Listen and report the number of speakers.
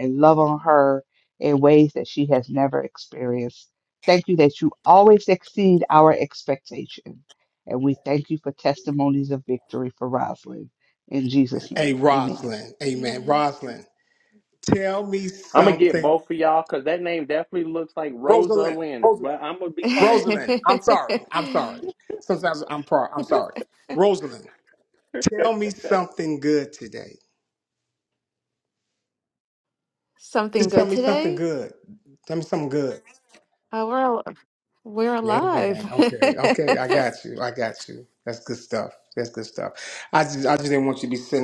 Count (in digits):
4